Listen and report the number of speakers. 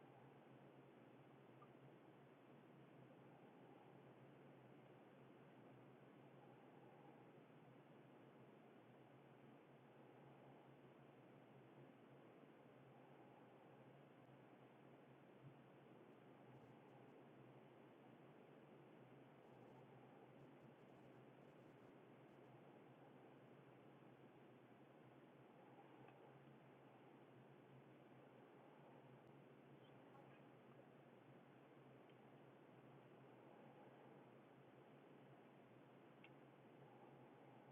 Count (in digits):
0